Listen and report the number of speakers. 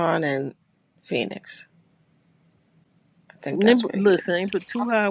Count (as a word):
two